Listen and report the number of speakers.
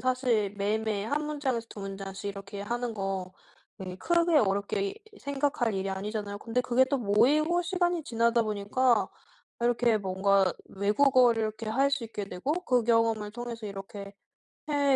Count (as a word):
one